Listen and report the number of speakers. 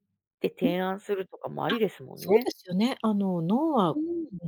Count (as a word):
two